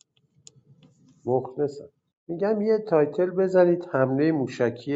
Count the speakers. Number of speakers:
1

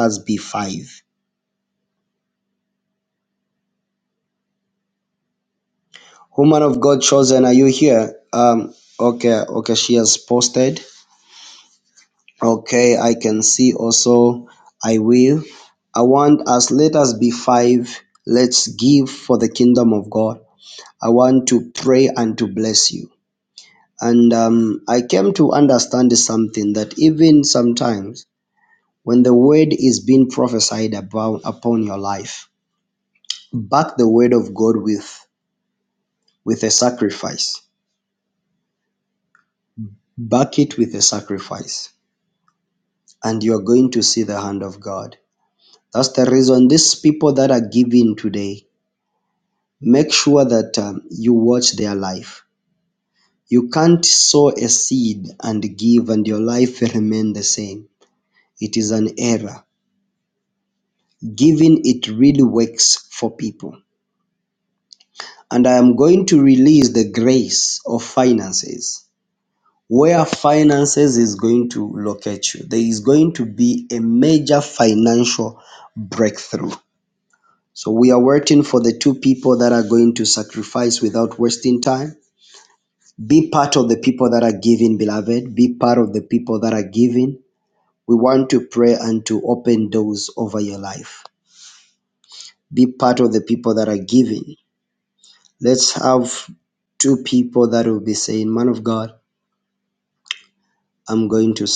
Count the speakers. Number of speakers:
1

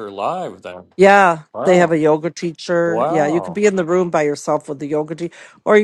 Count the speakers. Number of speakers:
2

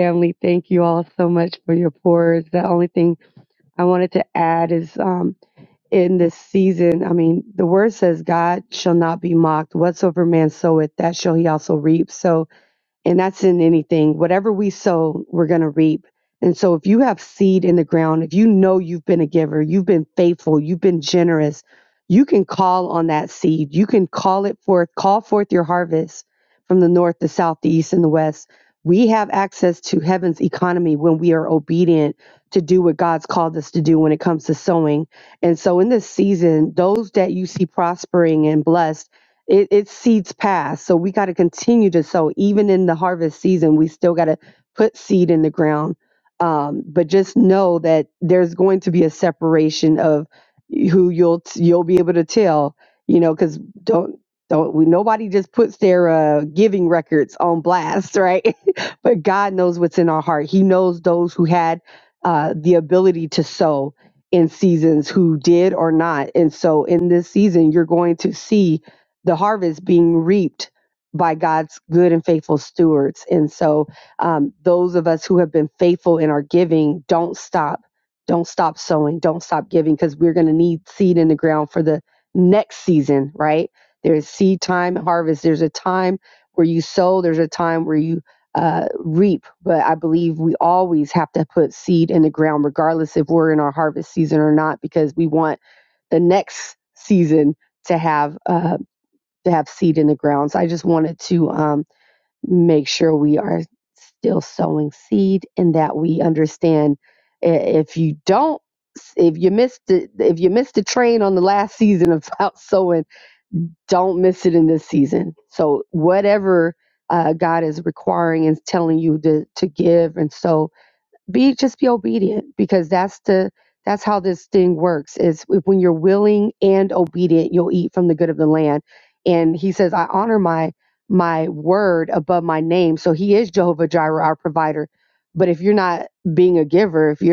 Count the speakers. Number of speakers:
1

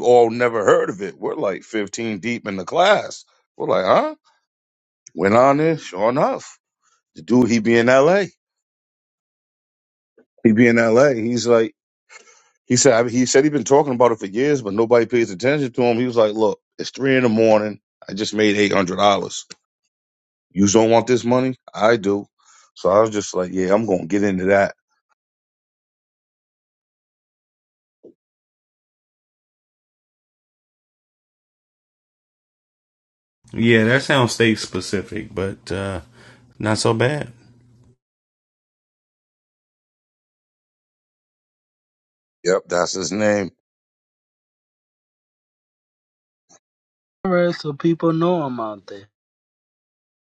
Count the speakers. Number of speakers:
3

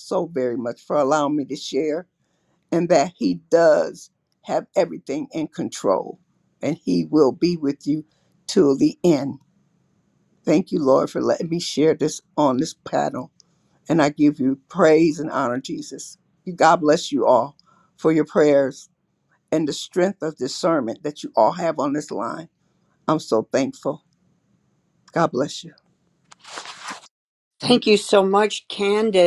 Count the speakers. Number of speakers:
2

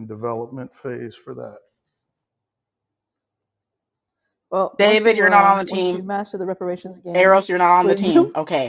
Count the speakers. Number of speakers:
3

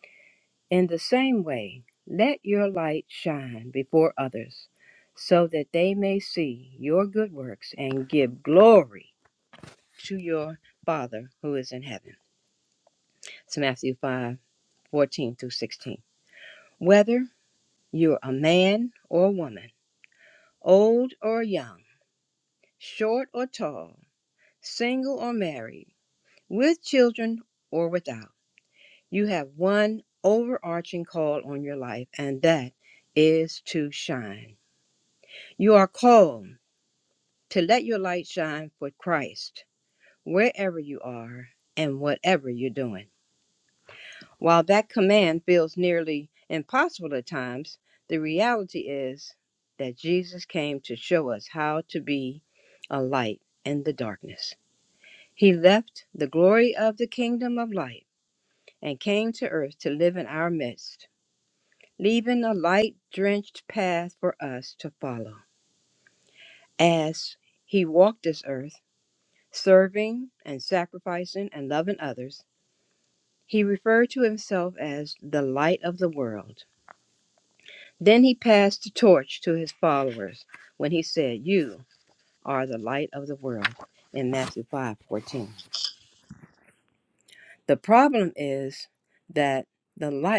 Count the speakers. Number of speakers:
1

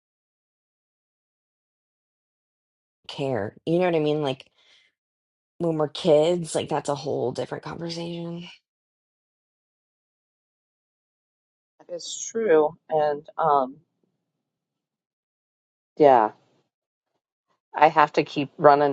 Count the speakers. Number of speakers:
2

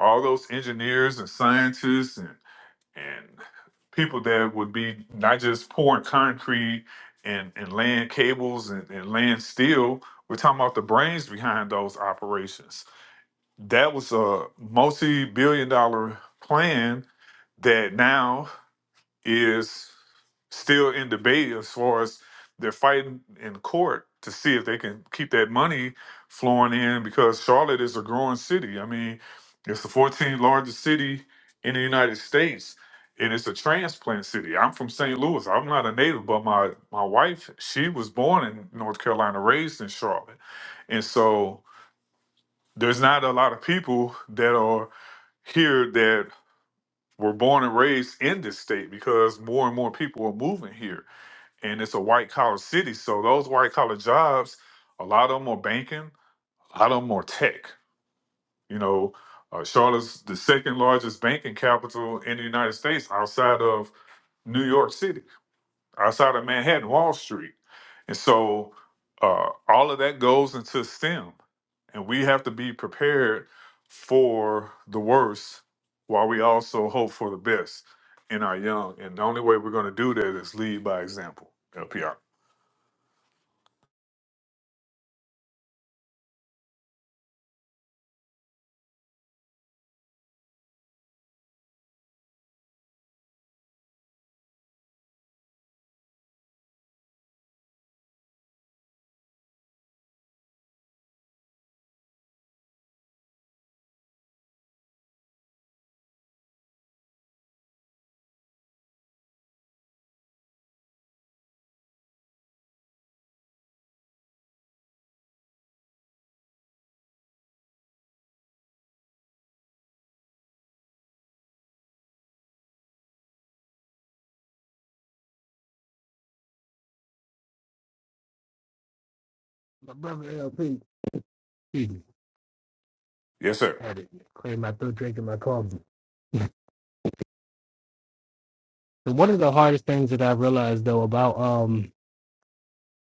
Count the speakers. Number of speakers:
2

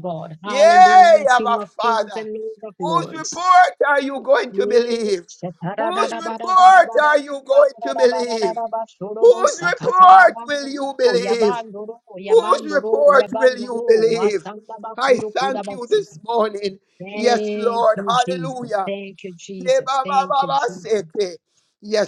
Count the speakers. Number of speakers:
2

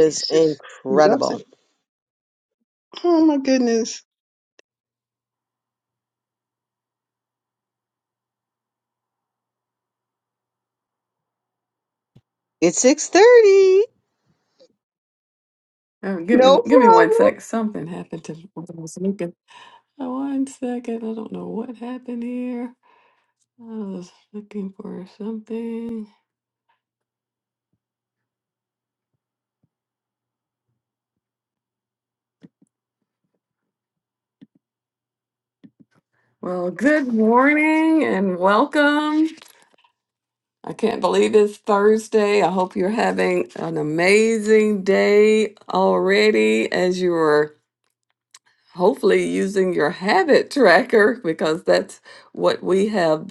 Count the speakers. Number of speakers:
3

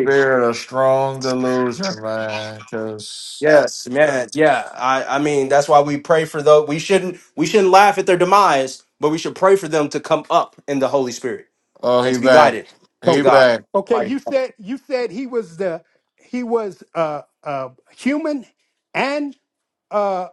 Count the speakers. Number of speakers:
3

